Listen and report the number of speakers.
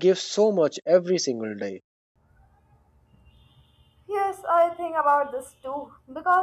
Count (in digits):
2